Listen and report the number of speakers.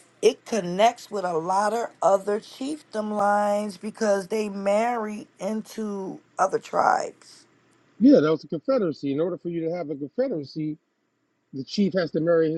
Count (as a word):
two